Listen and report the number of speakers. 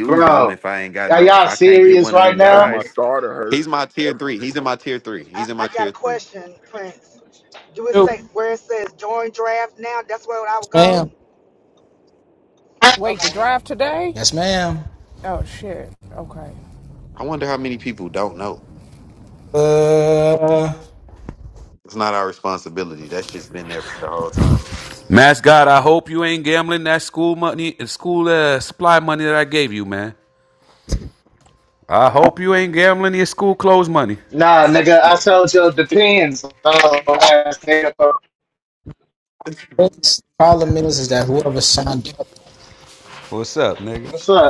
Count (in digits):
7